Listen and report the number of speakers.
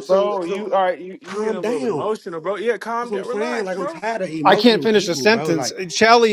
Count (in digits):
3